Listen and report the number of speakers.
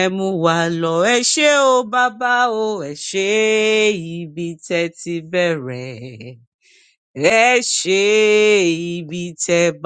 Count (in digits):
1